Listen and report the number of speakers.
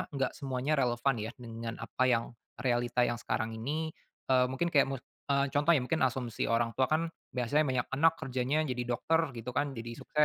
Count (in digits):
1